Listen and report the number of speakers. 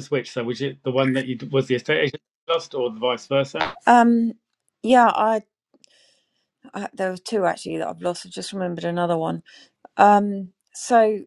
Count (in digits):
2